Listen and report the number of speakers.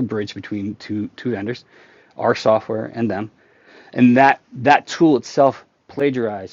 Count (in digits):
1